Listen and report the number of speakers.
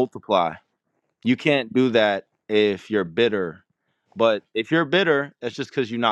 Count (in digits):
1